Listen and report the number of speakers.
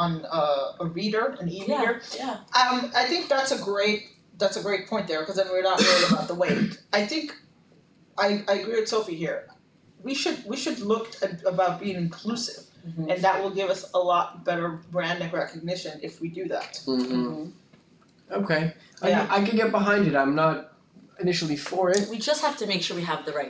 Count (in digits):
3